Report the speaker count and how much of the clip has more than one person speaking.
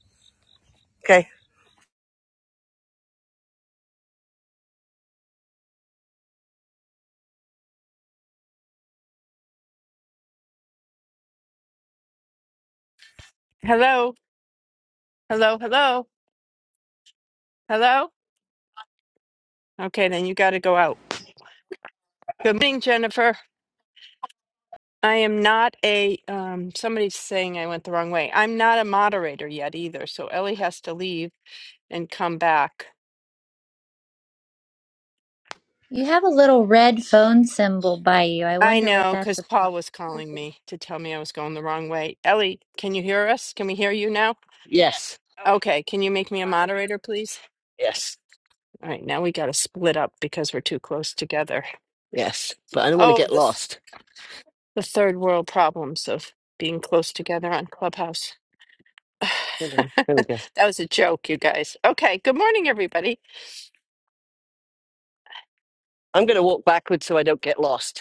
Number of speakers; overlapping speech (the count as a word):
three, about 3%